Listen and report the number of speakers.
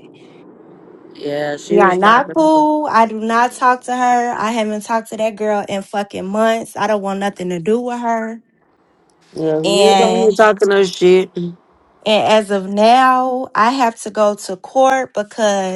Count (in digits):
2